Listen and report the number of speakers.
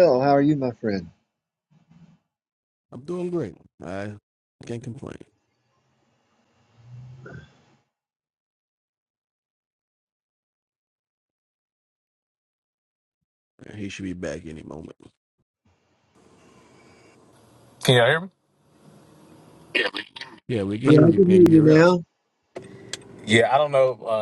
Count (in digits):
3